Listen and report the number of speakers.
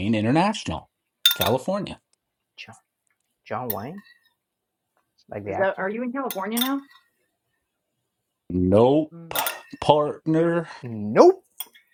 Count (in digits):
3